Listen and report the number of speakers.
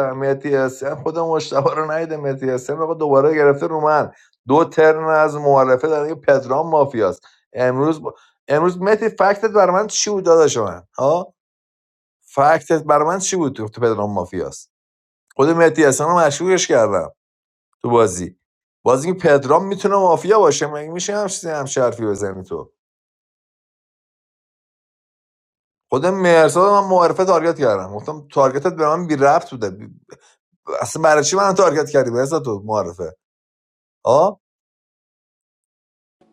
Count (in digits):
1